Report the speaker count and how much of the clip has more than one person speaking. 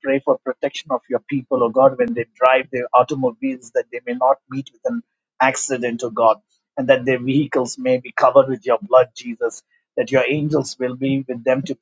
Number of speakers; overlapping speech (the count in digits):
1, no overlap